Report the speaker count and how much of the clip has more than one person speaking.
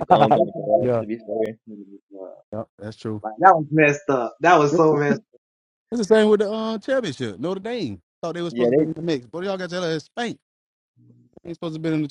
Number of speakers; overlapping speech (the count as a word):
three, about 6%